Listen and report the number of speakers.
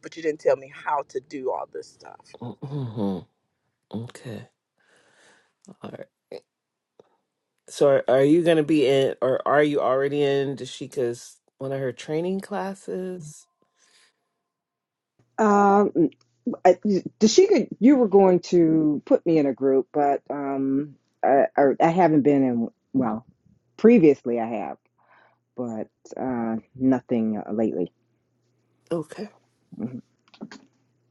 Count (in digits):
3